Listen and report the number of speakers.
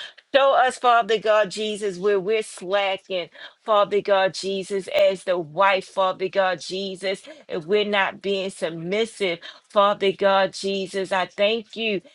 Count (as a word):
one